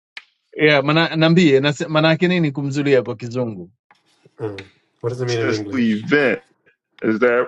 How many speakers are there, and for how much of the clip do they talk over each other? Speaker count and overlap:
3, about 10%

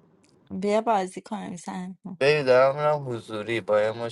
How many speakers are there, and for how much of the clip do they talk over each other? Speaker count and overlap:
2, no overlap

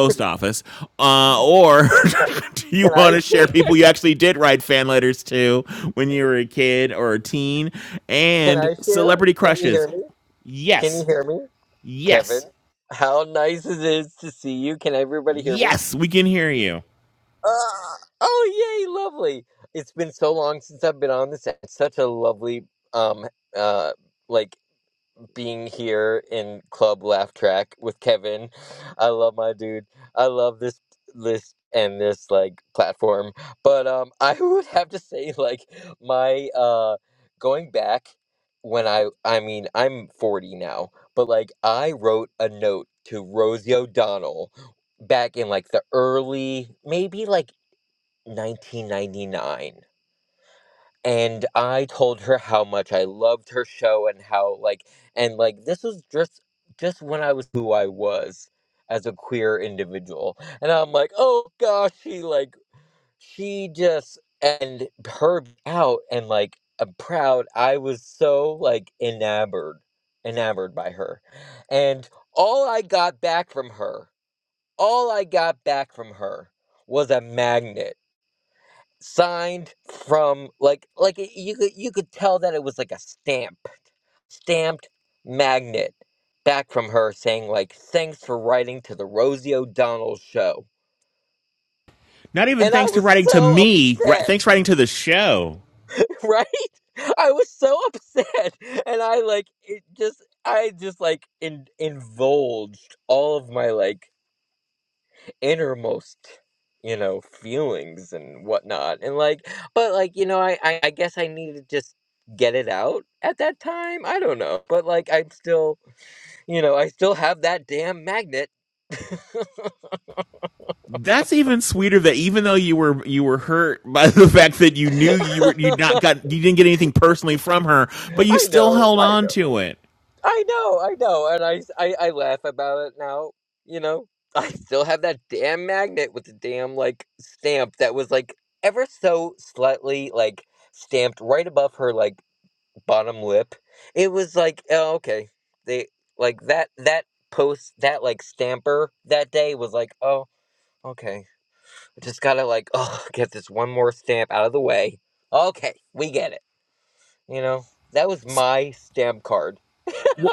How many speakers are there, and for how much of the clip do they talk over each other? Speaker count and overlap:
2, about 3%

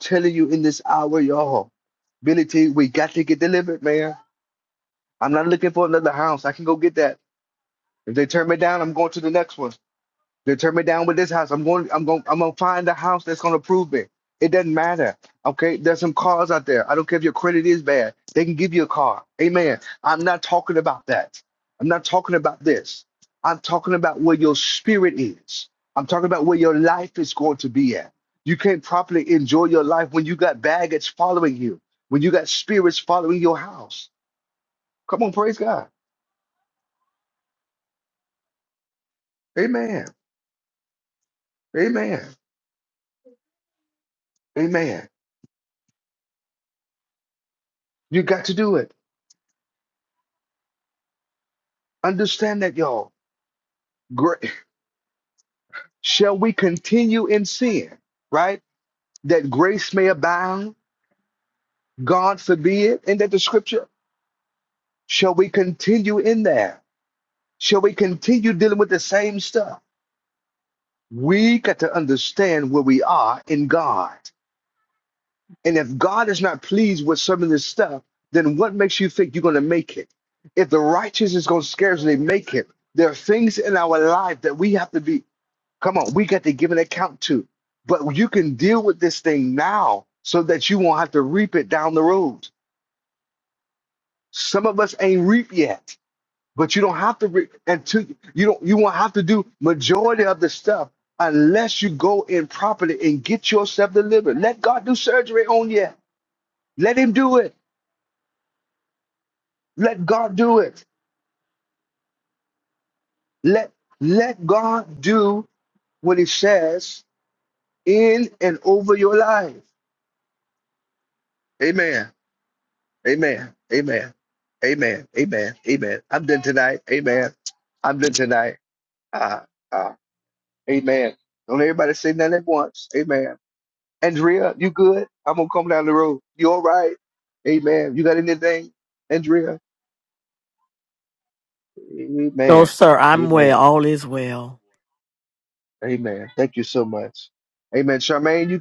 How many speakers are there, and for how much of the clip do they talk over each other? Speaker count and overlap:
2, under 1%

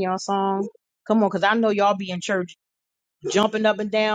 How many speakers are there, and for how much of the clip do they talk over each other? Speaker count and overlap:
1, no overlap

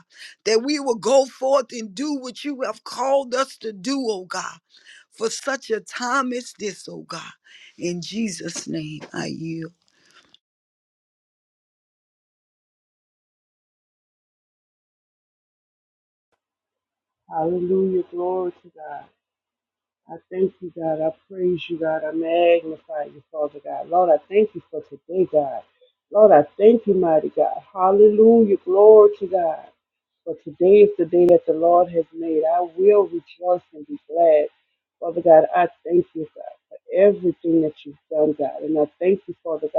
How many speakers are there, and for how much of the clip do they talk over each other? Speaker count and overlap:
2, no overlap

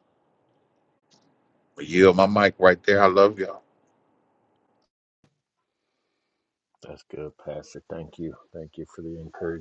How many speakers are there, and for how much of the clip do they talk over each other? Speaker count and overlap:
2, no overlap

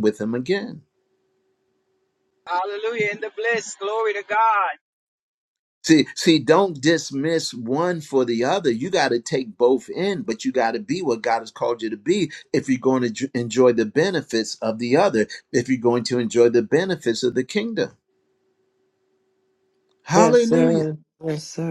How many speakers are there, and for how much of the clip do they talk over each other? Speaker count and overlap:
3, about 3%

